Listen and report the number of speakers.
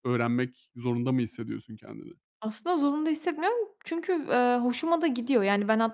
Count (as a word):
two